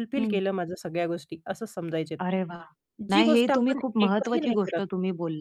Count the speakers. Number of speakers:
2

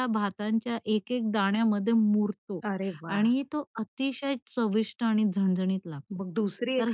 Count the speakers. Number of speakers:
2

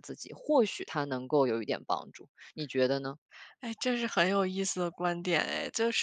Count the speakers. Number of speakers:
2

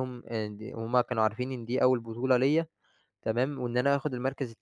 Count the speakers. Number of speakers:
1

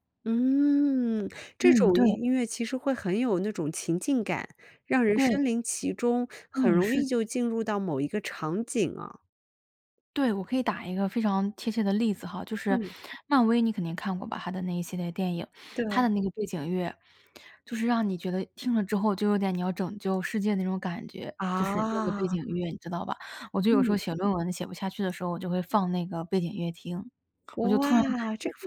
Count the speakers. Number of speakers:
2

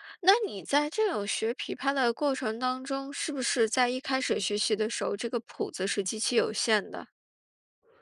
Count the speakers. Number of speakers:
1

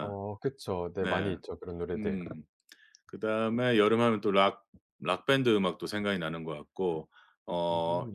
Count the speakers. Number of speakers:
2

